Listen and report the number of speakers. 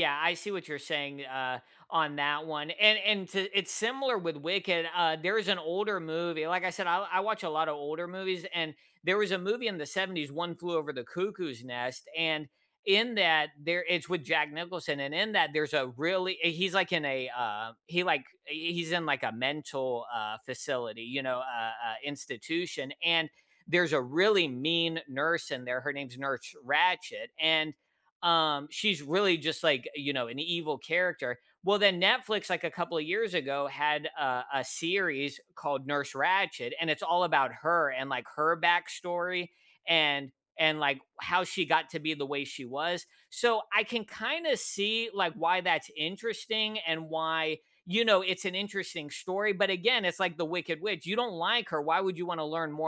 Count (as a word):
one